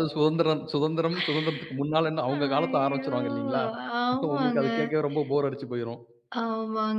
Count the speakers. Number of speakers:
two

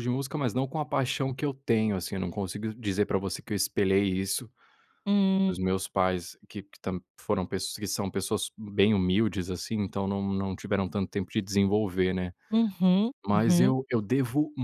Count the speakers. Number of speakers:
two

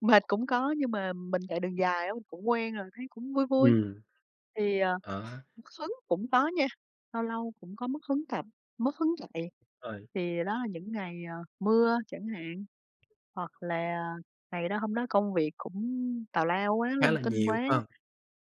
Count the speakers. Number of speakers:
two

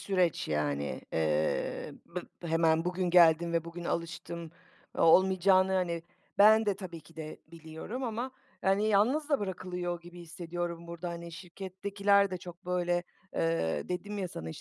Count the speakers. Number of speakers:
one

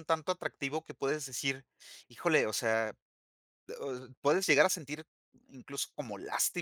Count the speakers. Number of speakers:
one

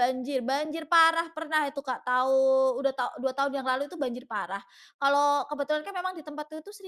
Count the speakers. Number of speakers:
one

